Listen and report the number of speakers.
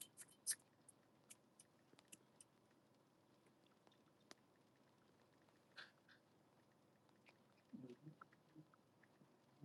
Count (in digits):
0